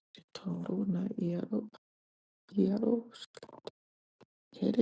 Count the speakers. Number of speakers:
one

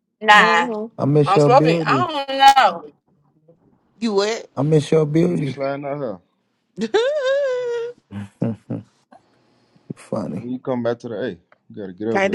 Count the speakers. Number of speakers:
four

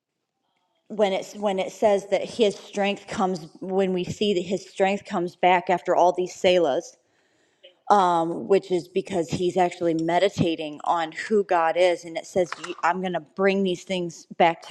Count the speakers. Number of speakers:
one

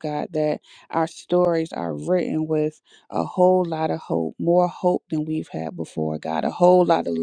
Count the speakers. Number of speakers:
one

